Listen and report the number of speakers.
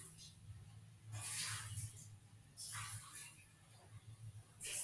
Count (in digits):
0